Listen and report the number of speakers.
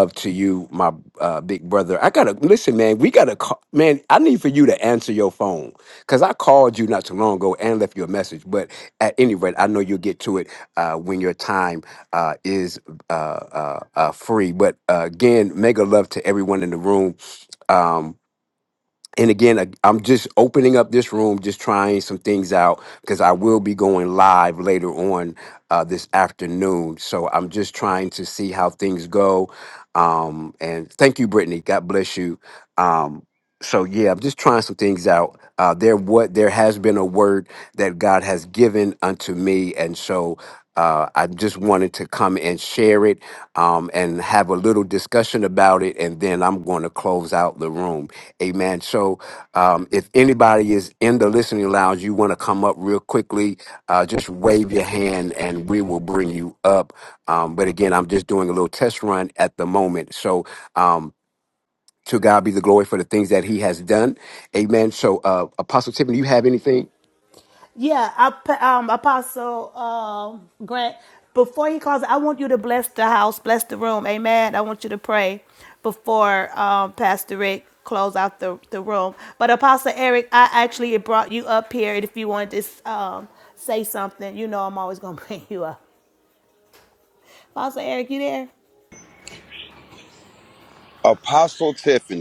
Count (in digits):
3